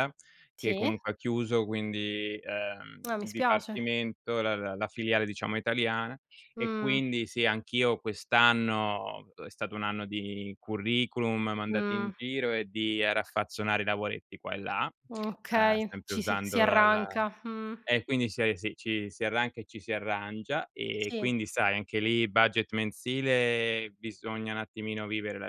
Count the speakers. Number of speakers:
2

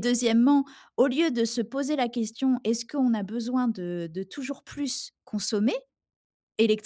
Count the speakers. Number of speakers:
1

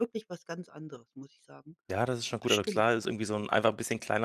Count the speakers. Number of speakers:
2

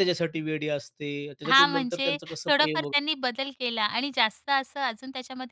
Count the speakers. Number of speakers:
2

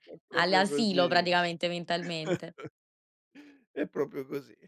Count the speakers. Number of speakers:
2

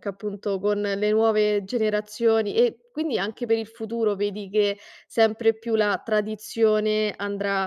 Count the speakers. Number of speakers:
1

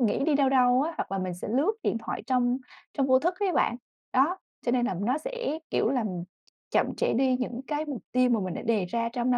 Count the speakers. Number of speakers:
1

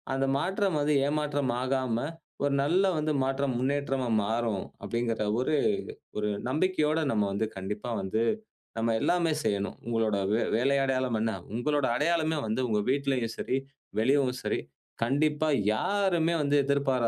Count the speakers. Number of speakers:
1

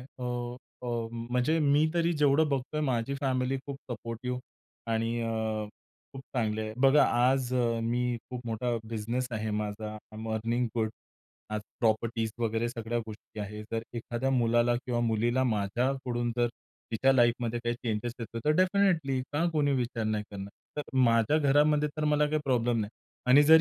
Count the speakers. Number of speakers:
1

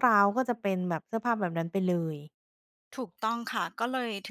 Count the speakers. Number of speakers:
2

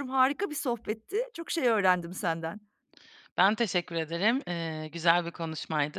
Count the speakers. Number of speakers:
2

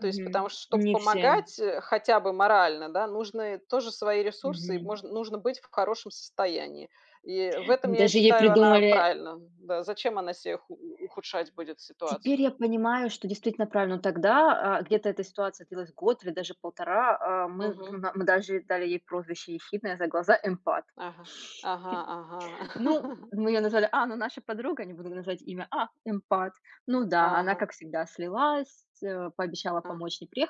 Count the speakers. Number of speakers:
2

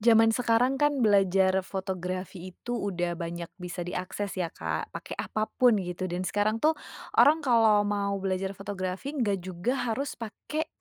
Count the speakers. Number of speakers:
1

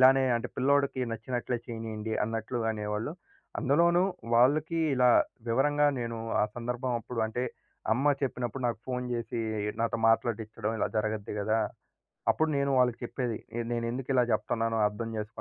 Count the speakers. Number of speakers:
1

